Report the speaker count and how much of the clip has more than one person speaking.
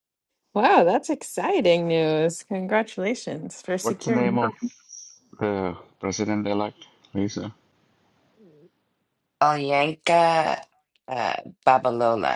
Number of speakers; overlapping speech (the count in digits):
3, about 5%